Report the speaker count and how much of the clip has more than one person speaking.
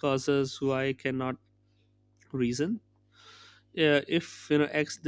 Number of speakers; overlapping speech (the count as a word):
one, no overlap